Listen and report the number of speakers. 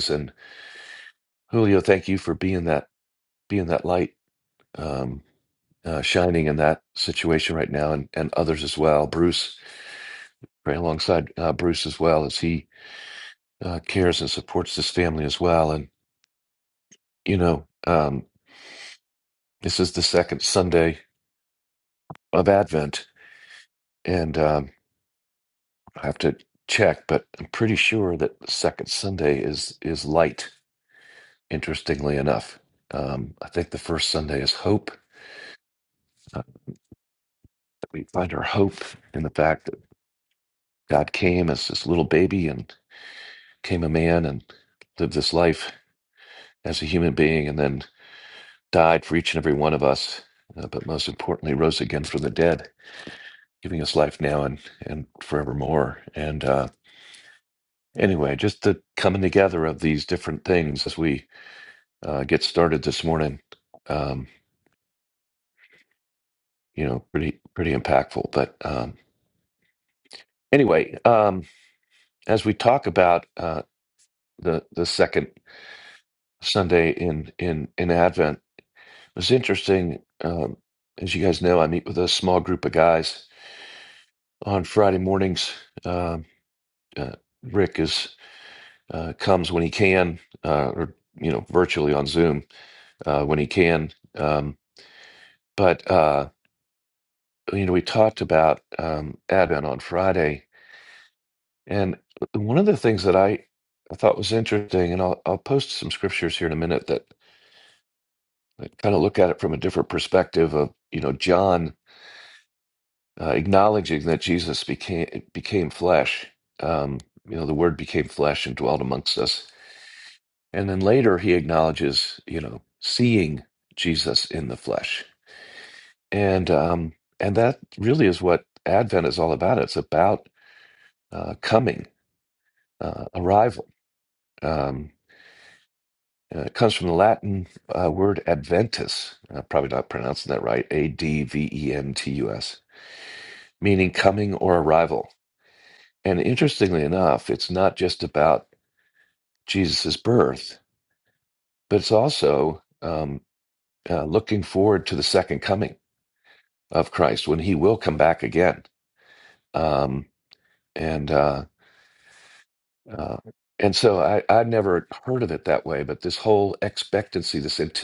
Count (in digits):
1